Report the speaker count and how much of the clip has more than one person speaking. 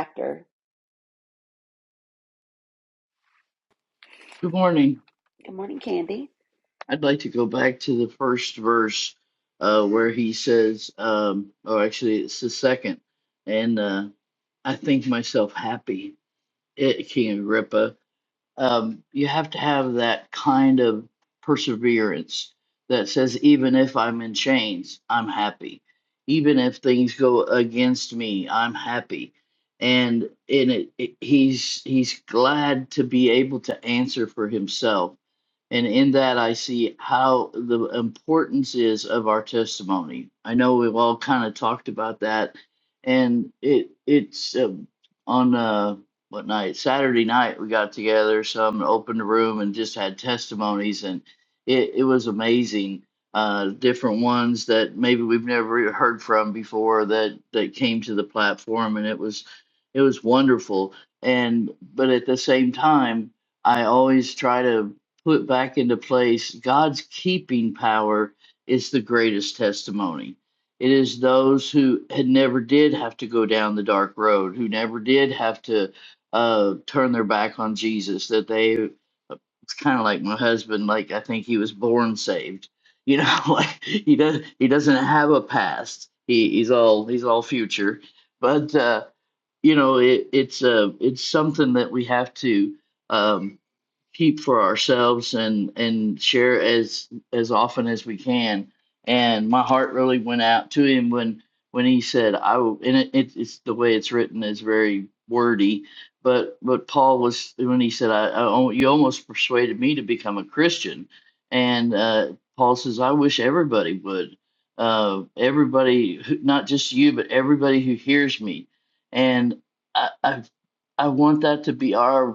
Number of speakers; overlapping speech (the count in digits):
2, no overlap